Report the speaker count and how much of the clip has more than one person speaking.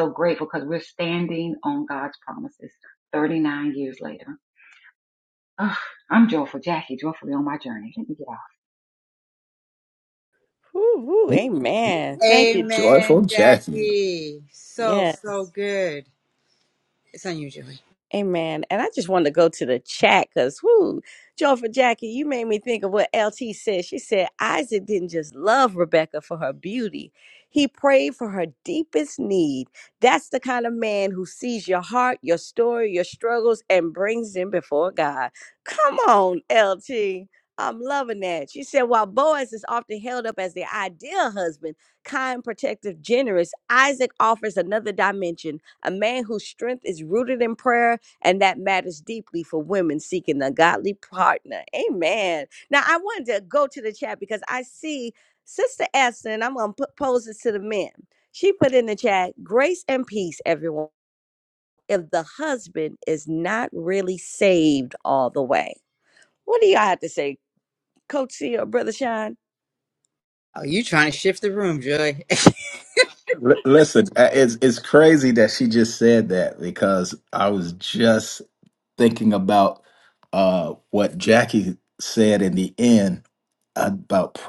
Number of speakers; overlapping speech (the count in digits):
4, about 3%